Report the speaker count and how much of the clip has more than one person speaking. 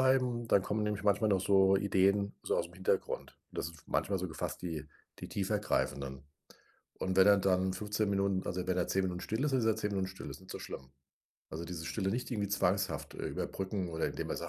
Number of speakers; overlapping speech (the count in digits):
1, no overlap